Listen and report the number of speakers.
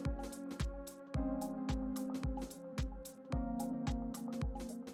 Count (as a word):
zero